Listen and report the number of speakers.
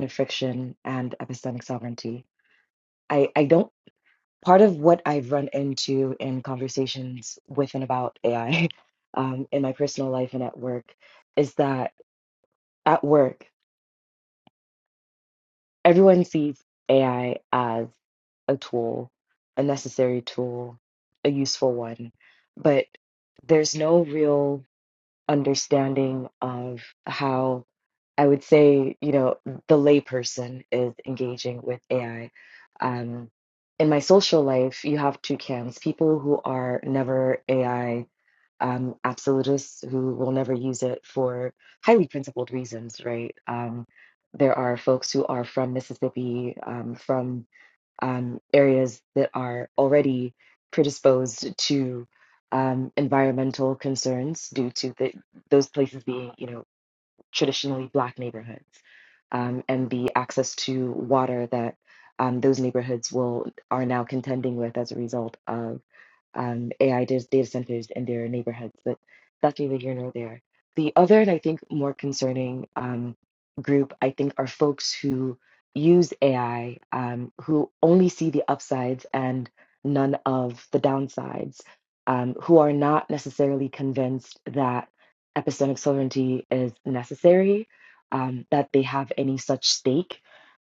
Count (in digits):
1